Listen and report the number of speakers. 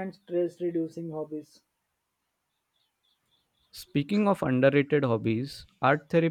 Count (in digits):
2